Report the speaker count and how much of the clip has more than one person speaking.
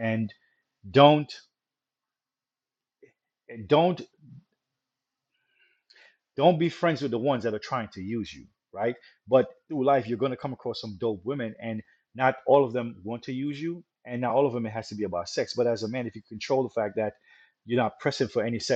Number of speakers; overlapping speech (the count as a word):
one, no overlap